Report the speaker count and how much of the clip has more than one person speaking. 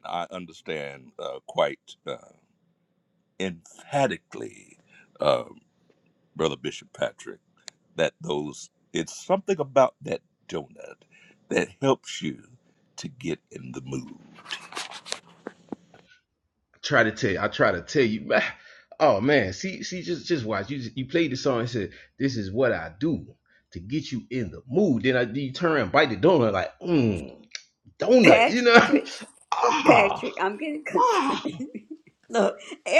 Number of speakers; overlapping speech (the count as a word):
three, about 5%